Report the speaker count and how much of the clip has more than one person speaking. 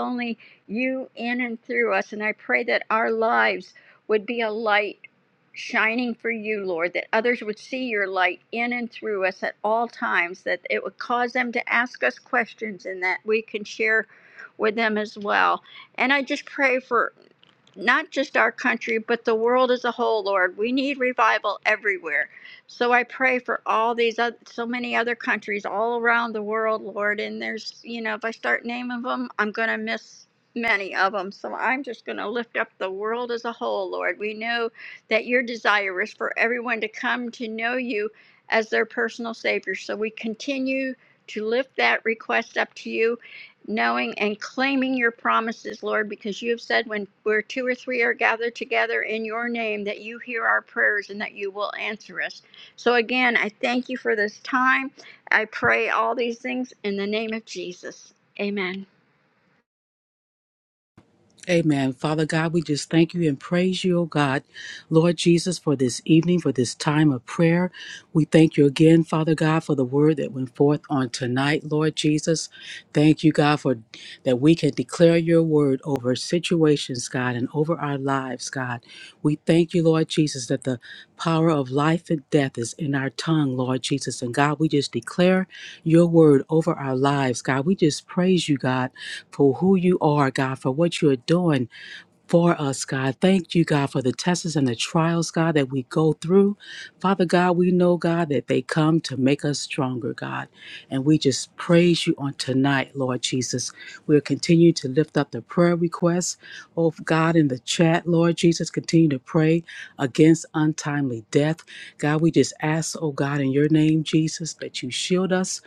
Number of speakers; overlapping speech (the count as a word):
two, no overlap